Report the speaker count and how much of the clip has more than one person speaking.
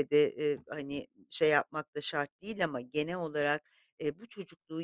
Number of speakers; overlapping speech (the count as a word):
one, no overlap